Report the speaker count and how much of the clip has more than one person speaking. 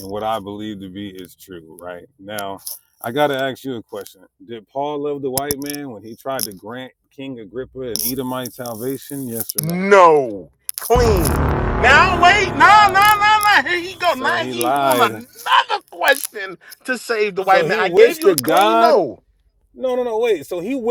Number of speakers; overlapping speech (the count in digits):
2, about 19%